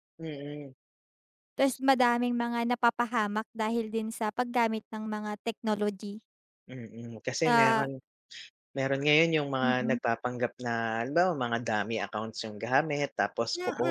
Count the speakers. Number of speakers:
two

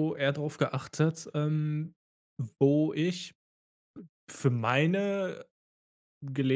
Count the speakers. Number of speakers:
one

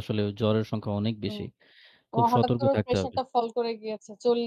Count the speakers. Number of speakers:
two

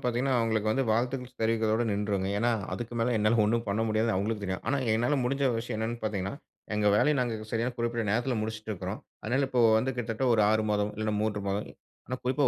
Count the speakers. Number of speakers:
one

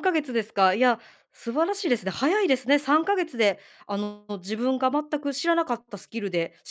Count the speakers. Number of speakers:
one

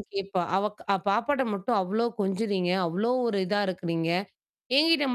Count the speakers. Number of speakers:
one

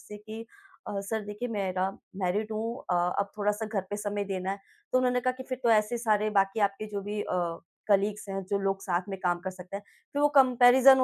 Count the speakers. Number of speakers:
one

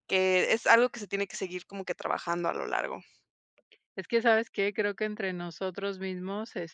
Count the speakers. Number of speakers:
two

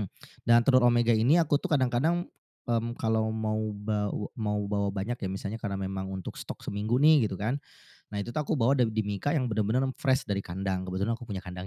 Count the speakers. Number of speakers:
one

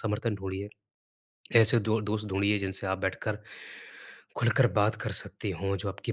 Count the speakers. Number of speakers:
one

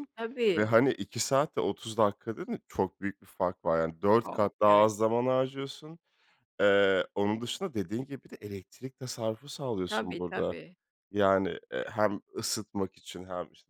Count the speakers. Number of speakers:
two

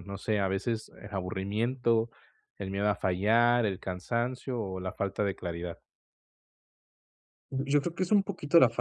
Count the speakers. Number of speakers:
two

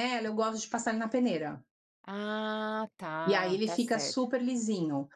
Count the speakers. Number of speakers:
two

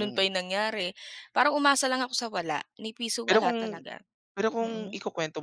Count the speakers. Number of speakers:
two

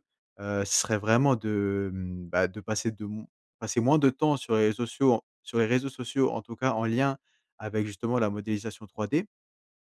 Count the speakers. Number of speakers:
one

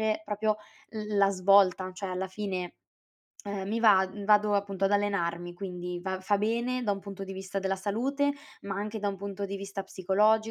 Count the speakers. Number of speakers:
one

